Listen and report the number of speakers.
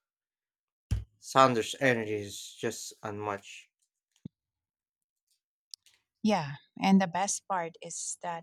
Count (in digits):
2